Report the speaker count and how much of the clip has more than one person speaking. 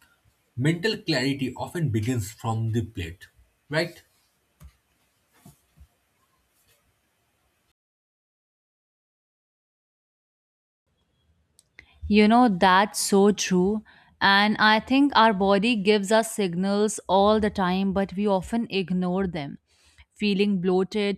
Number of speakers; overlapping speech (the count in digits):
2, no overlap